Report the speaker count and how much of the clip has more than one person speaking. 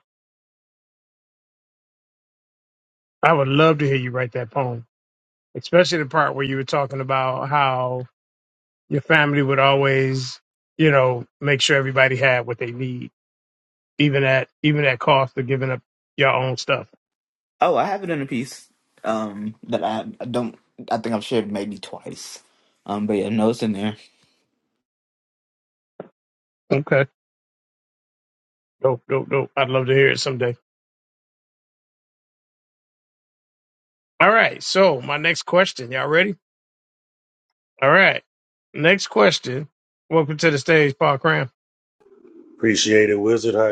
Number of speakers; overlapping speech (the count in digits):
3, no overlap